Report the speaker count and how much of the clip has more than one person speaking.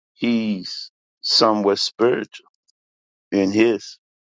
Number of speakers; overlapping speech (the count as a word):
one, no overlap